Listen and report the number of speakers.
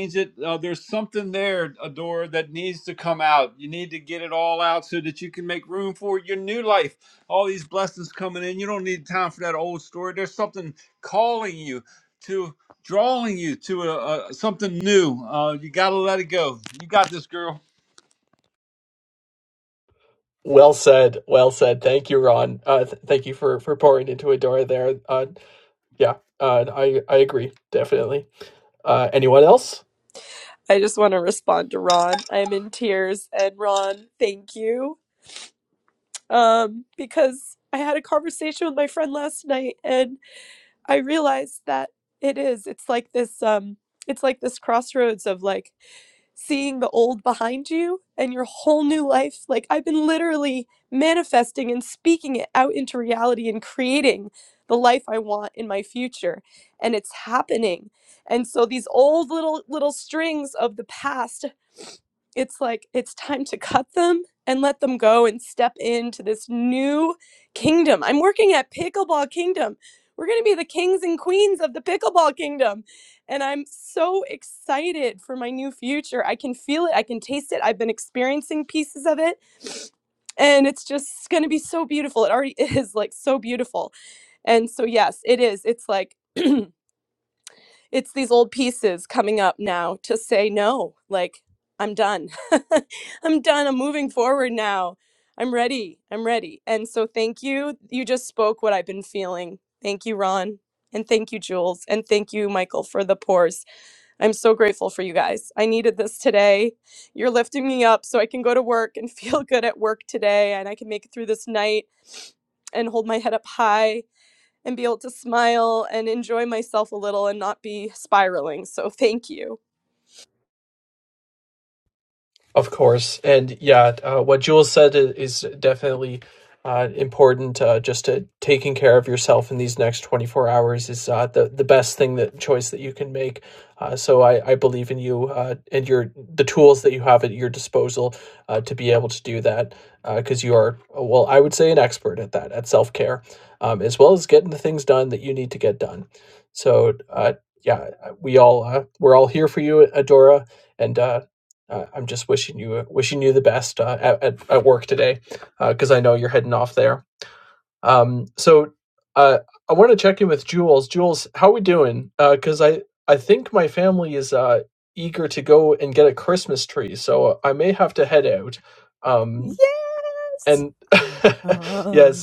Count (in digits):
4